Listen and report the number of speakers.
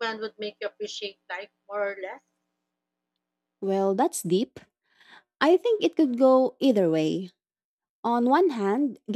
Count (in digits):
2